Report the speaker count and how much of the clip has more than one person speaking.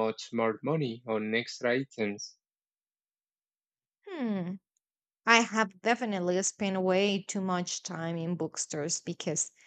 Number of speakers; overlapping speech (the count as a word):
two, no overlap